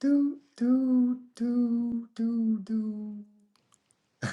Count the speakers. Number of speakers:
one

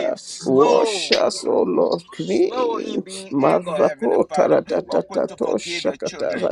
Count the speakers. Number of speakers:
two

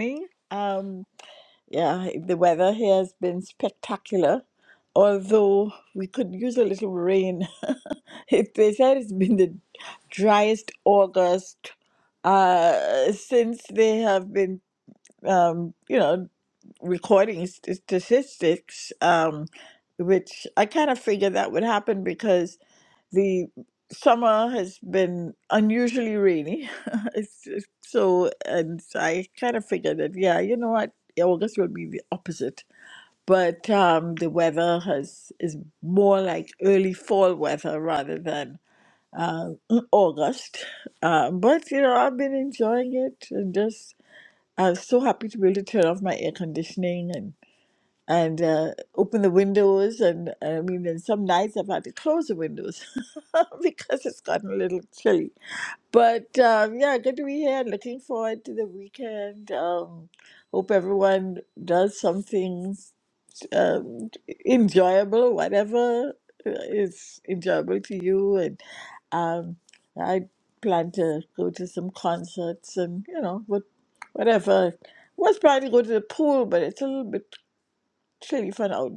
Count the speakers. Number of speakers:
one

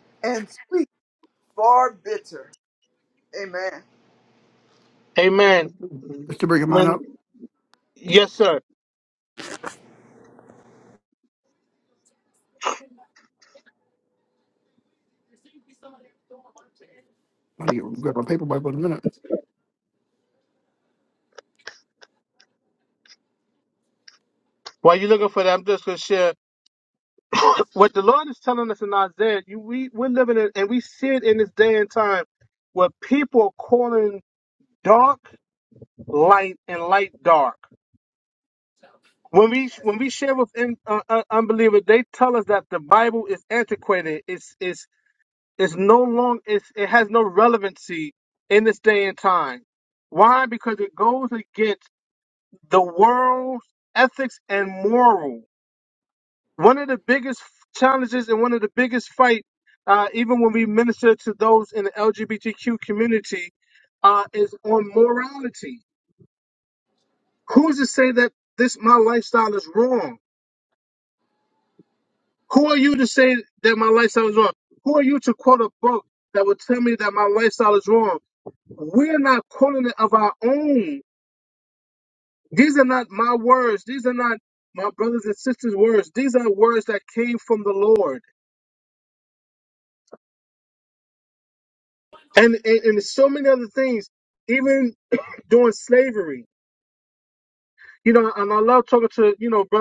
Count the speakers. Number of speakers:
three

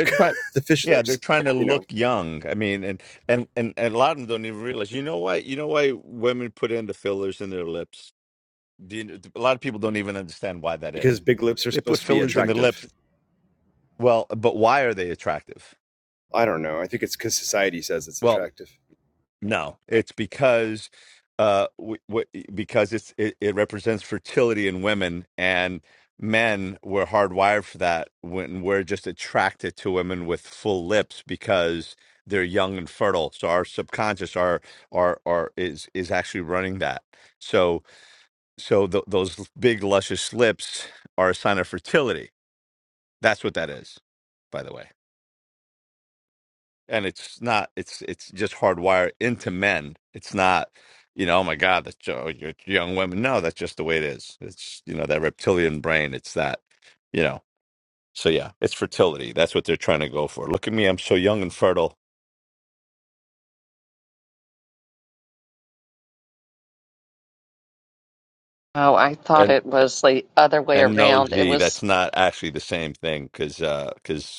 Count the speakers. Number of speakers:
three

